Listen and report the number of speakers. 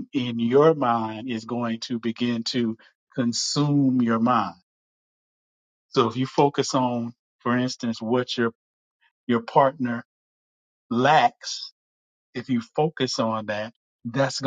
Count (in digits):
1